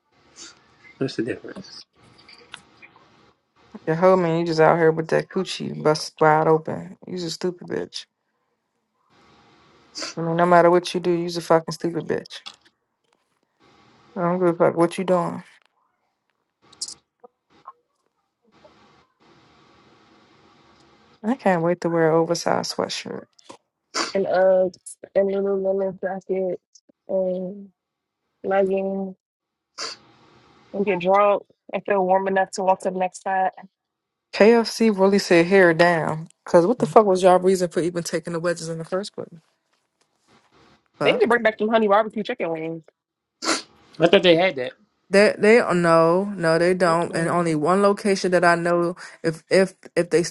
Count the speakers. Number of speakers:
3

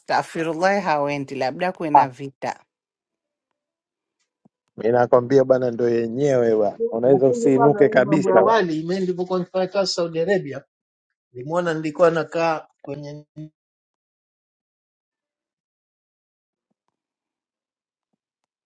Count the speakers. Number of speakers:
3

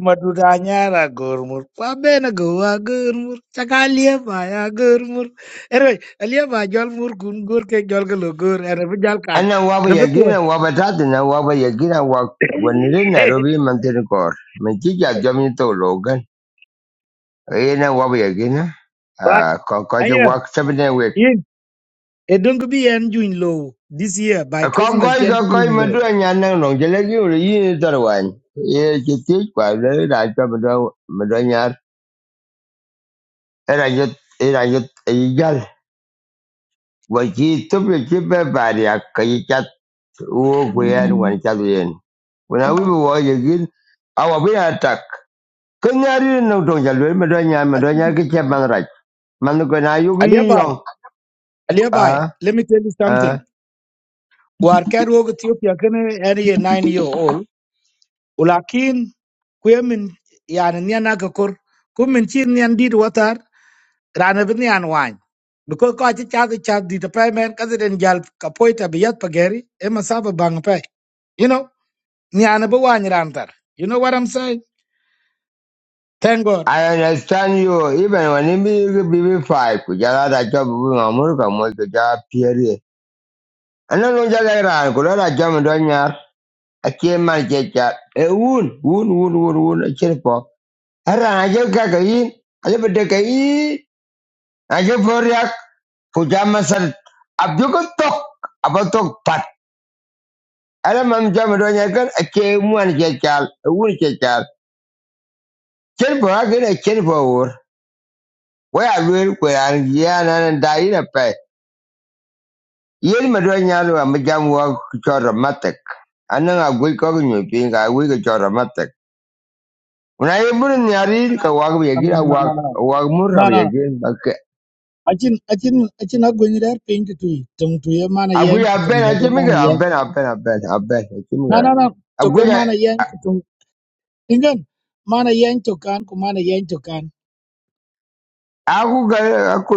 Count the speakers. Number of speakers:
2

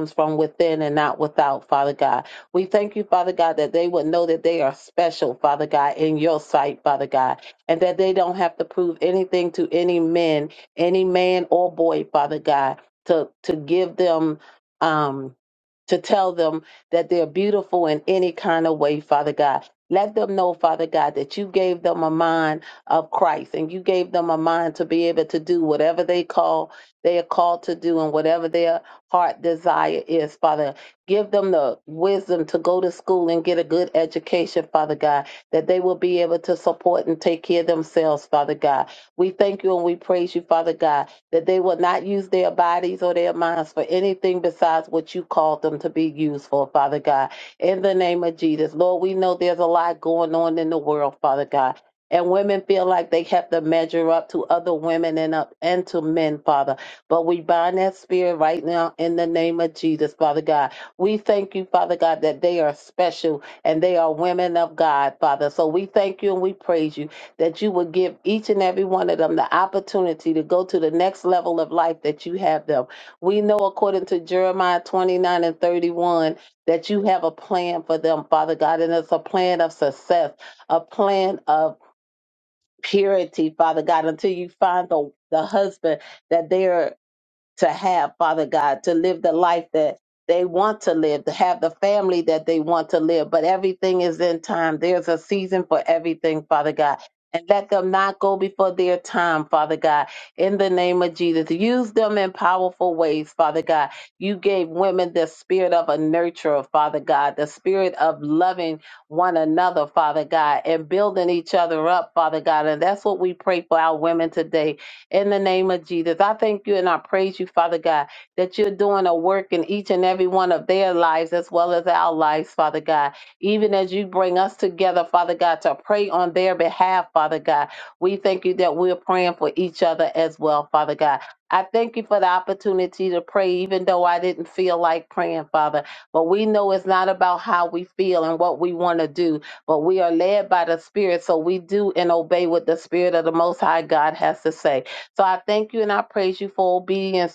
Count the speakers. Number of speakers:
1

